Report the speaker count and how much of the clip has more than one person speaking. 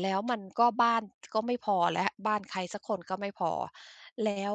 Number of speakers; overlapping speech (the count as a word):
one, no overlap